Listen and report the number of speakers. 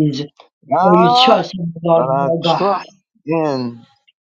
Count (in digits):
2